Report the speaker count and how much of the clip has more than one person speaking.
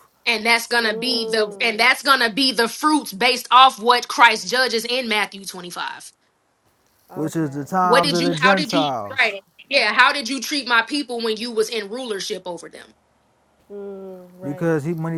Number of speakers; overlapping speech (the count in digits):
3, about 21%